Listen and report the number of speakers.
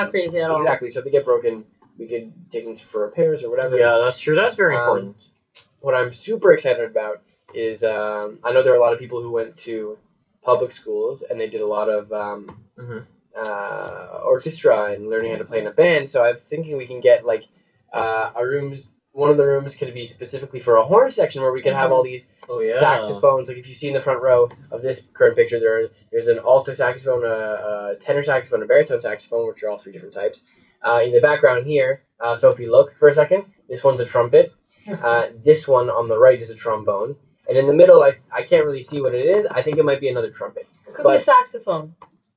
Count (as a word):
three